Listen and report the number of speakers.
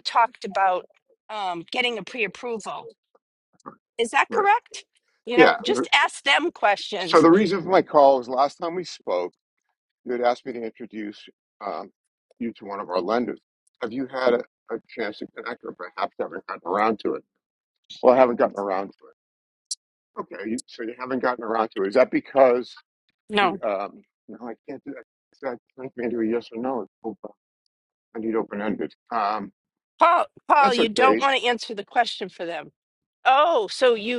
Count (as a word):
two